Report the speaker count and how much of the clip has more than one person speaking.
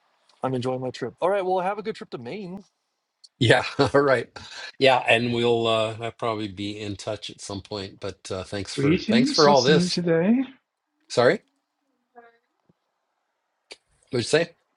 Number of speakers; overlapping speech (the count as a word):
three, about 8%